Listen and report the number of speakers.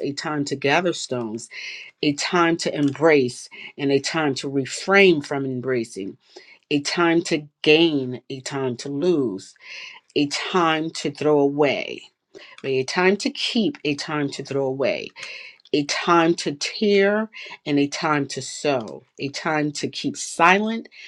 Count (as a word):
one